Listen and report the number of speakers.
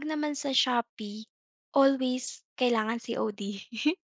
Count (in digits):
1